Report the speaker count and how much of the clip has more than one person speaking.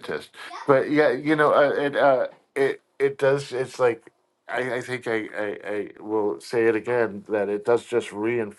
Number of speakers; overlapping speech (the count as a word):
one, no overlap